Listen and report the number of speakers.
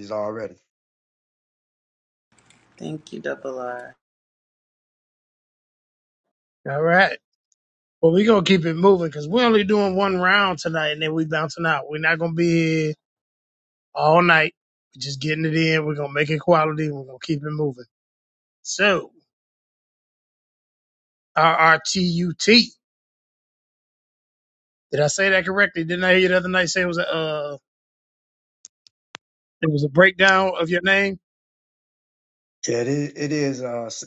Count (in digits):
3